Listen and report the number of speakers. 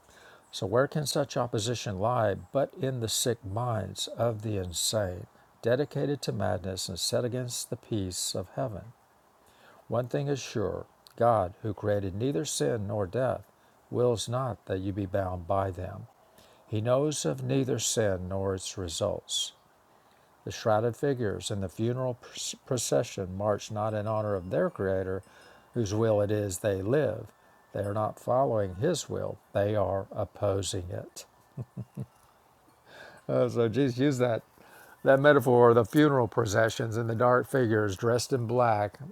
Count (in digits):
1